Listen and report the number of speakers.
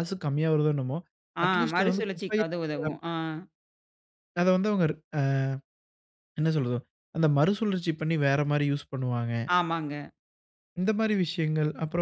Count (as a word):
two